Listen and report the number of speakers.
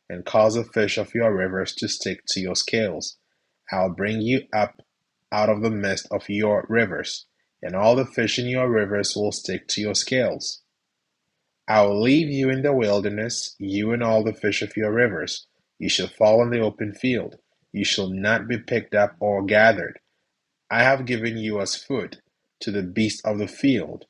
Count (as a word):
one